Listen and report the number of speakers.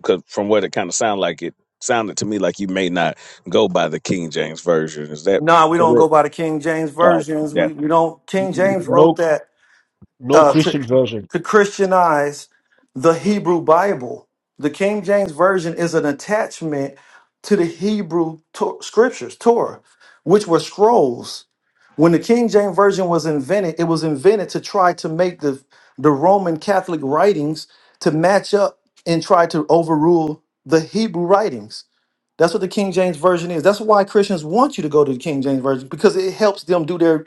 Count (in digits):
3